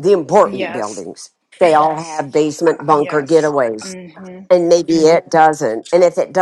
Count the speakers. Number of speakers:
two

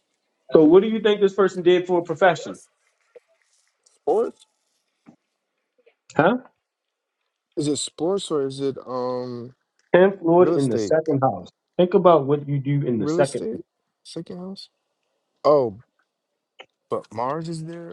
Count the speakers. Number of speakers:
two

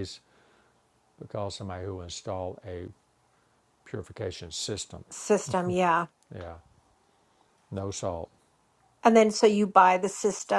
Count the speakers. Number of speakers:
two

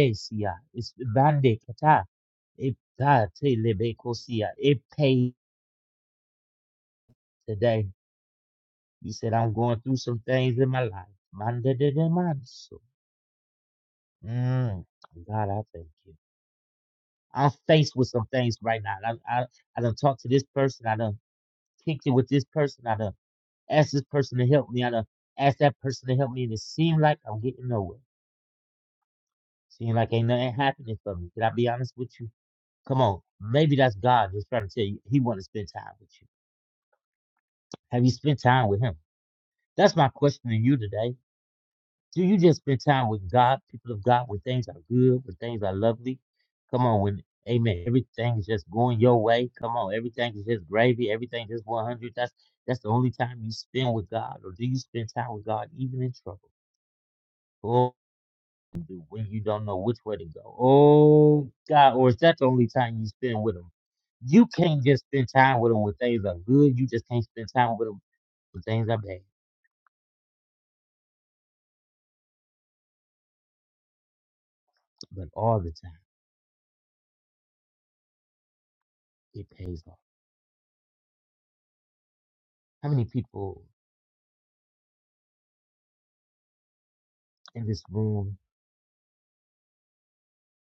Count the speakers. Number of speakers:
one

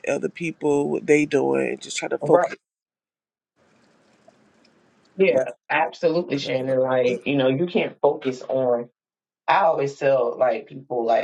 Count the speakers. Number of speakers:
two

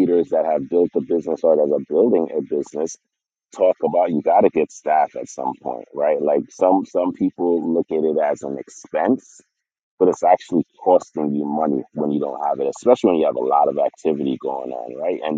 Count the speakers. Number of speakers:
one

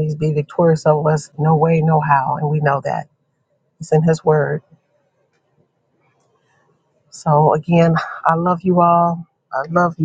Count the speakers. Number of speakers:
one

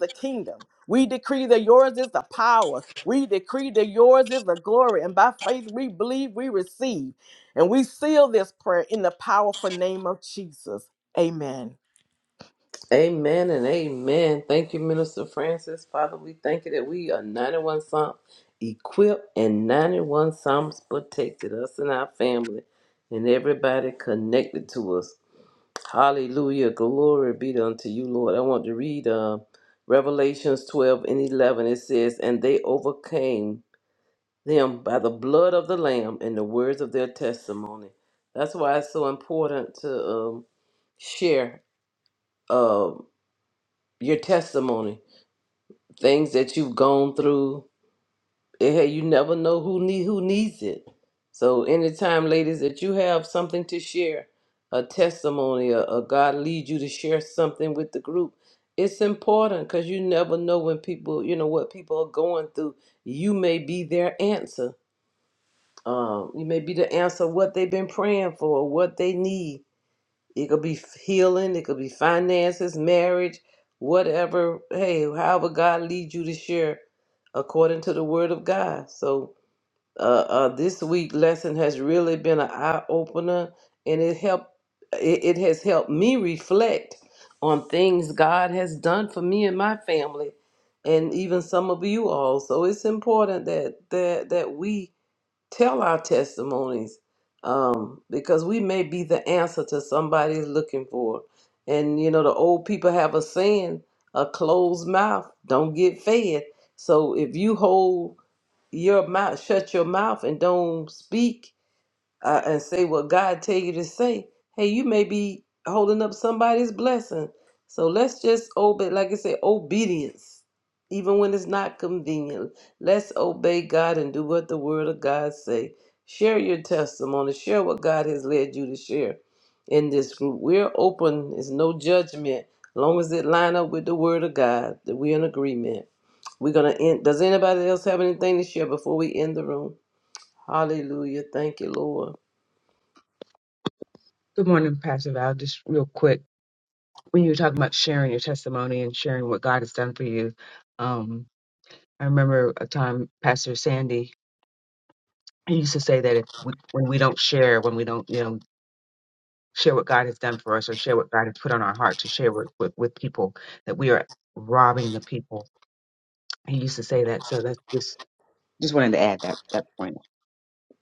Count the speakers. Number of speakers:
three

